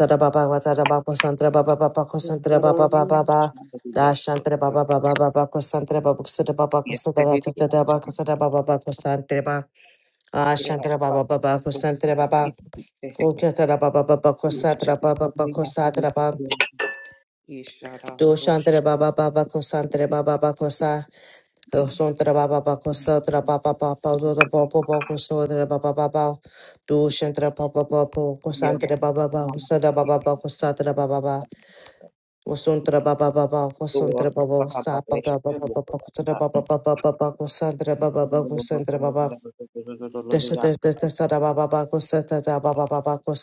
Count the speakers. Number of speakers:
two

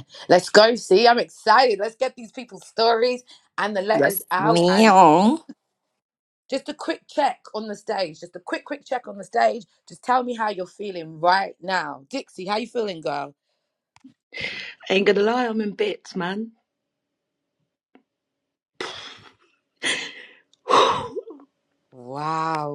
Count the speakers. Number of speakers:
three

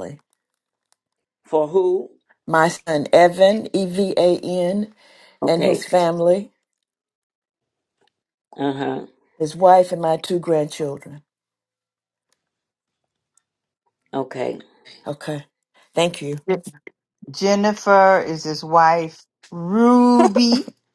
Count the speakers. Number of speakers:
three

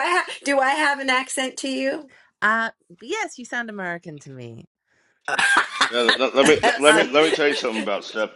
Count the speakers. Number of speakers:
three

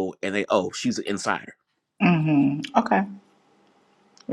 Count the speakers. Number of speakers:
two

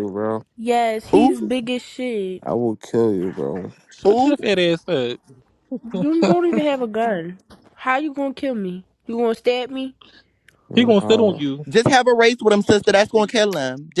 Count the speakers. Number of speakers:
four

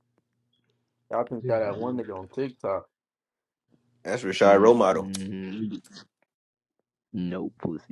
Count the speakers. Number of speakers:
three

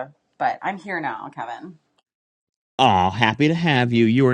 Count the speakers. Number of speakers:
two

